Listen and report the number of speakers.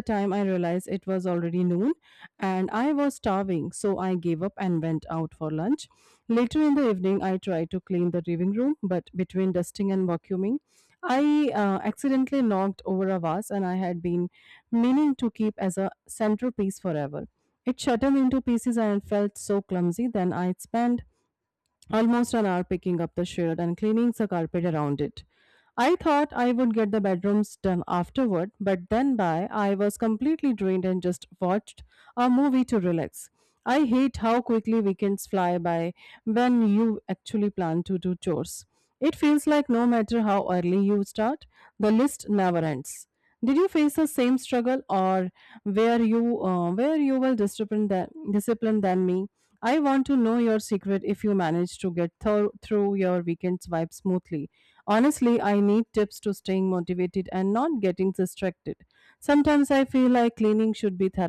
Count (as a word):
one